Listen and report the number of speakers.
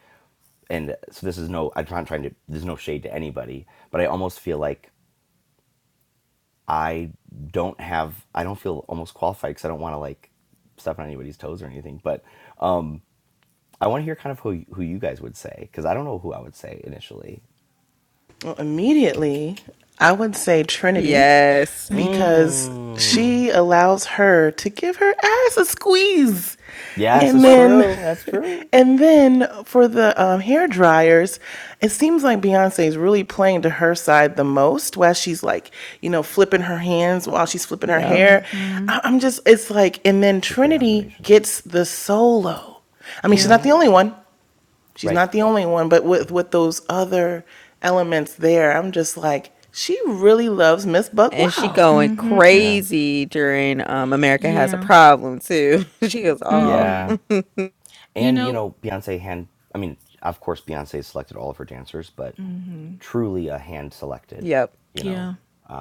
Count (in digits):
4